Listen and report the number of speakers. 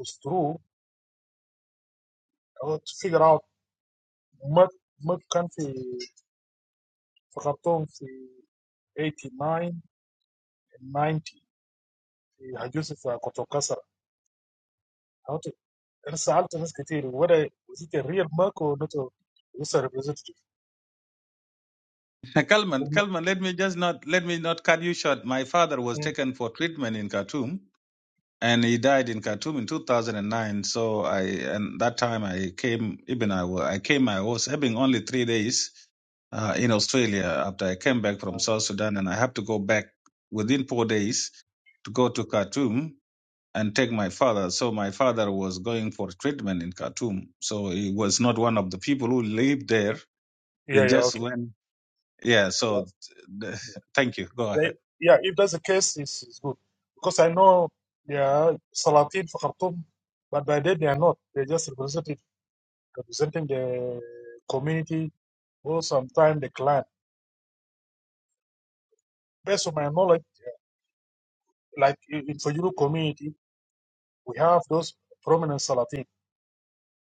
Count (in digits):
2